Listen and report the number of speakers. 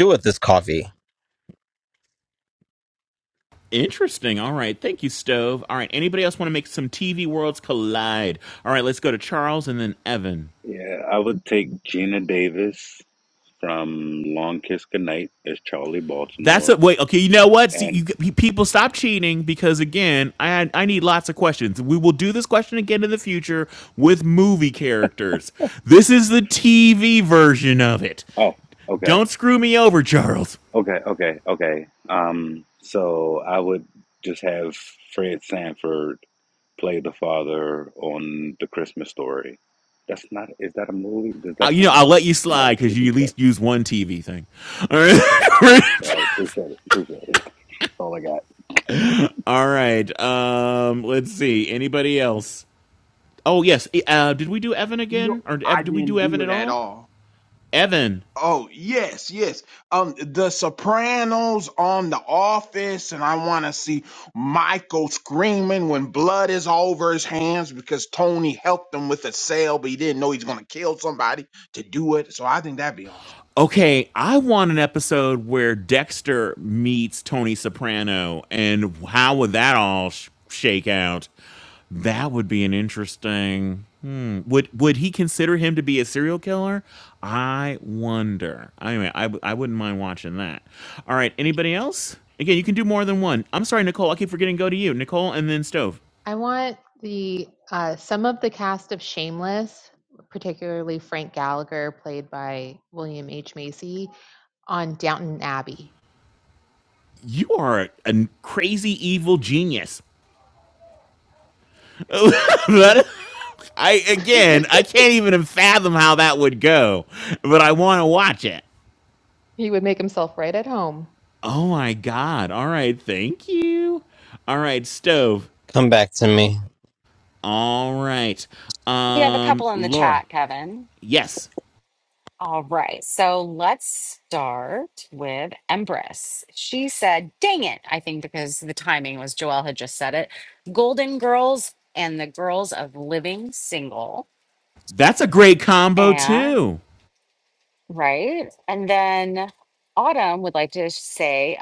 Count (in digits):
6